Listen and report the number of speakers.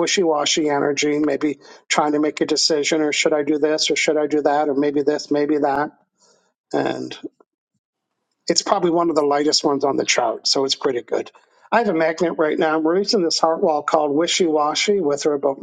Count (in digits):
1